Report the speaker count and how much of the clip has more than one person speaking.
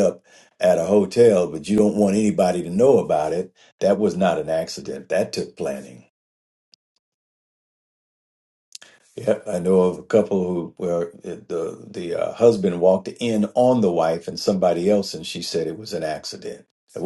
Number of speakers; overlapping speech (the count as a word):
one, no overlap